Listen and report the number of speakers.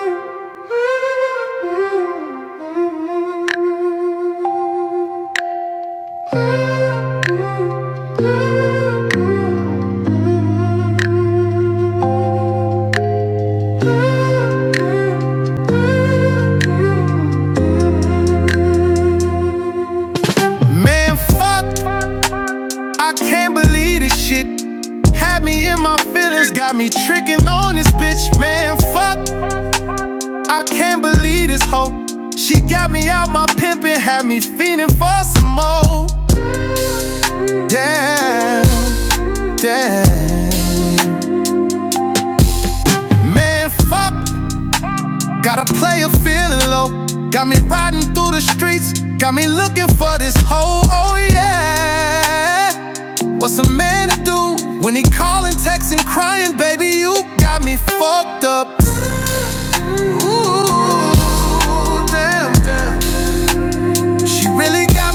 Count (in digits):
1